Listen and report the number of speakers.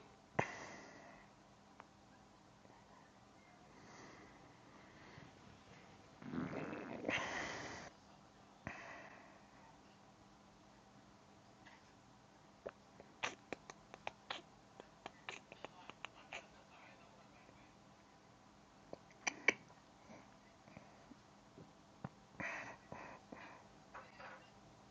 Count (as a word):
zero